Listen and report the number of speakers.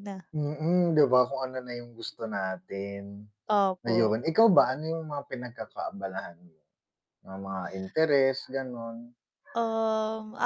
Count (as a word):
two